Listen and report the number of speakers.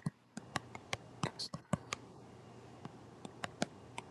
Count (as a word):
zero